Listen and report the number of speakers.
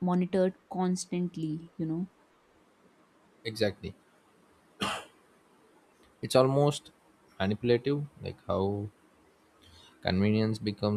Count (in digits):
2